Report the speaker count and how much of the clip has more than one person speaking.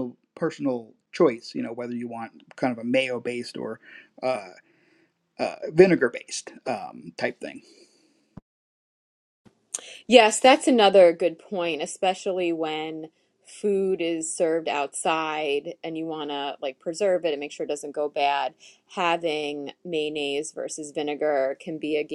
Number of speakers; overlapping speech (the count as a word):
two, no overlap